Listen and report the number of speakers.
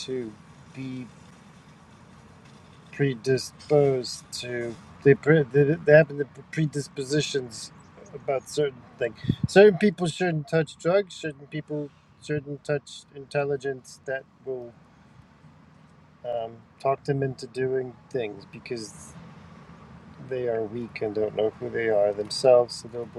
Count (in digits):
1